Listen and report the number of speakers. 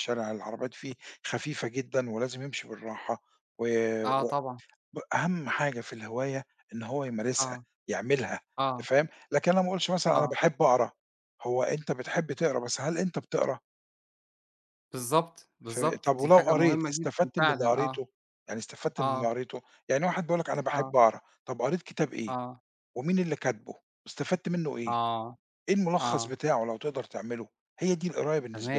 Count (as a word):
two